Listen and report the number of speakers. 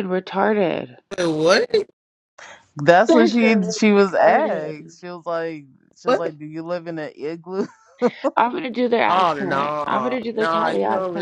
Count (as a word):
three